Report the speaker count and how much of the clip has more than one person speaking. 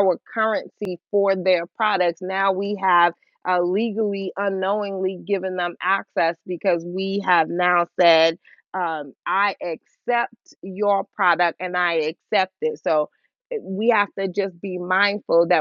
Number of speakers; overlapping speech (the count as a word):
one, no overlap